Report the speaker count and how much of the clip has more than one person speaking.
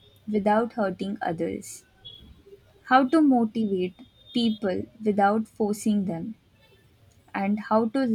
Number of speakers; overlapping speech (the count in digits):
1, no overlap